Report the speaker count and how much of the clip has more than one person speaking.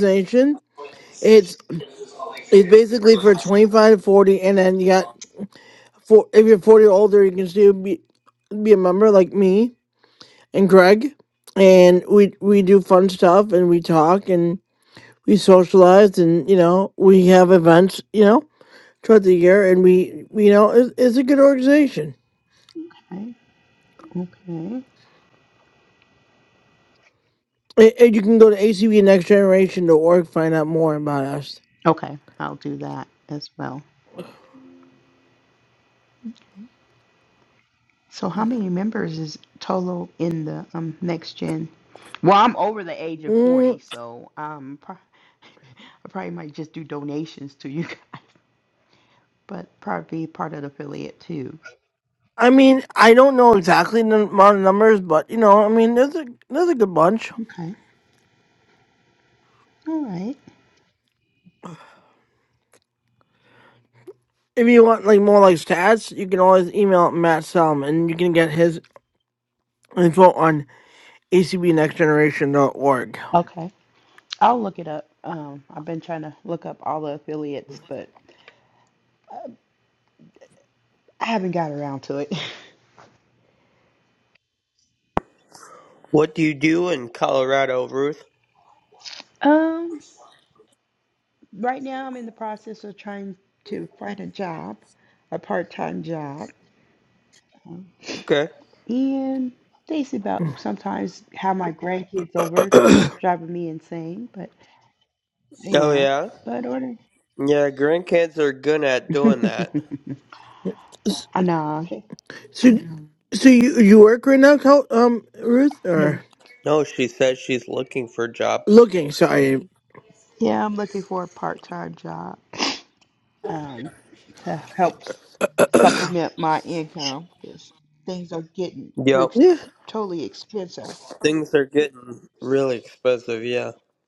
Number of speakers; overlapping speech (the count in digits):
3, about 1%